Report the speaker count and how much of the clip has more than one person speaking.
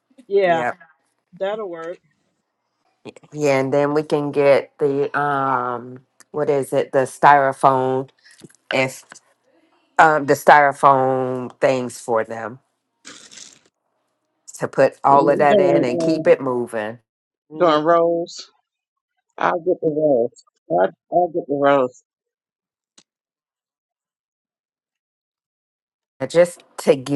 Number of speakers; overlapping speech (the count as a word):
three, about 6%